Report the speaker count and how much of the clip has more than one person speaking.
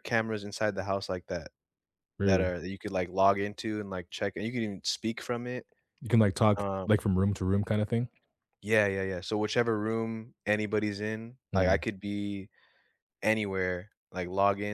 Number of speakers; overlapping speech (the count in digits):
2, about 5%